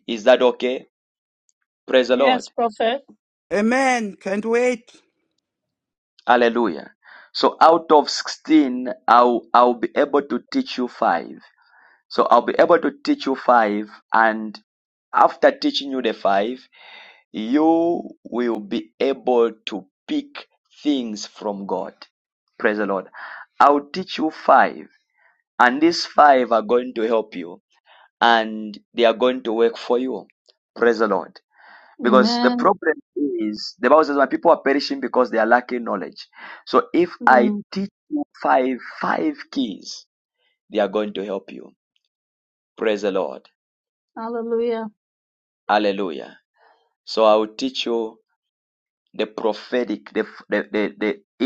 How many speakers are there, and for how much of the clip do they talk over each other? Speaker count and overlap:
3, about 3%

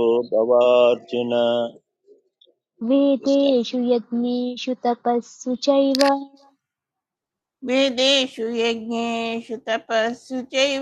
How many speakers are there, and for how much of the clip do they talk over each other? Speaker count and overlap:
3, about 3%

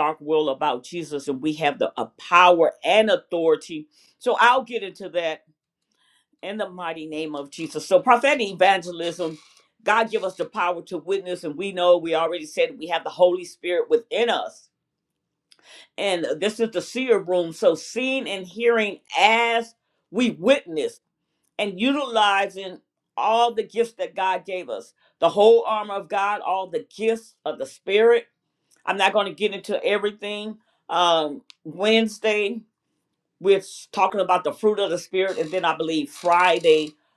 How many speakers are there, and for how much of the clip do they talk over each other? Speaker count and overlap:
1, no overlap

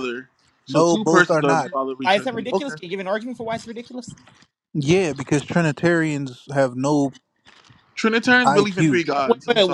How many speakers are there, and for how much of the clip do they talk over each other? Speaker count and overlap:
3, about 30%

